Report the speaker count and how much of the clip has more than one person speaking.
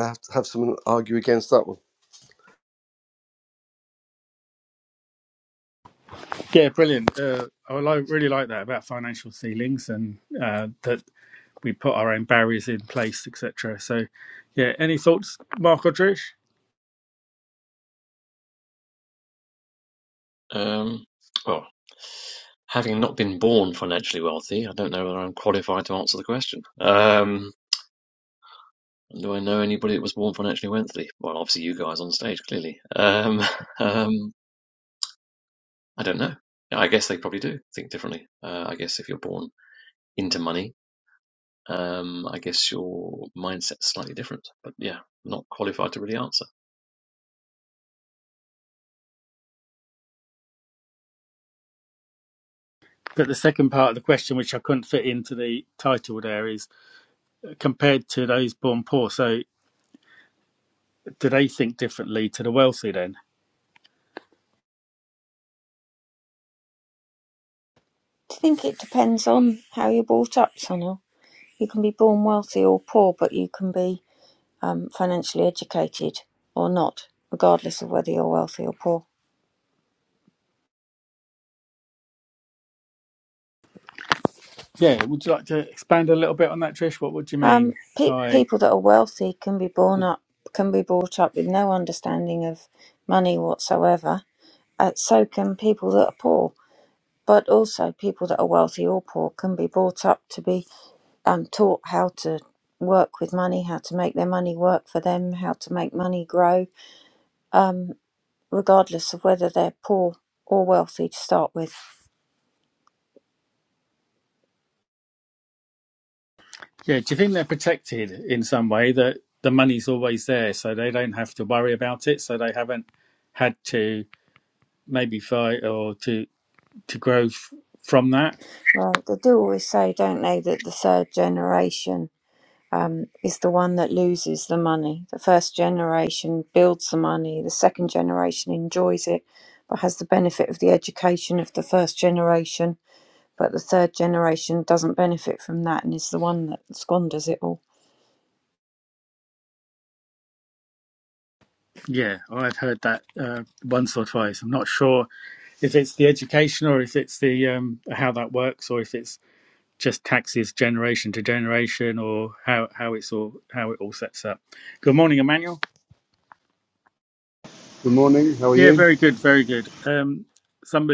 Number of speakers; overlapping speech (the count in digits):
5, about 1%